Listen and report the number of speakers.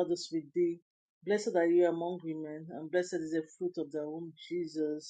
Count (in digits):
1